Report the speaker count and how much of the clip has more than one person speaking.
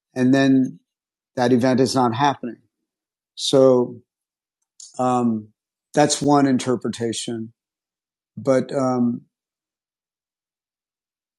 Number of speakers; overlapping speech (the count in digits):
1, no overlap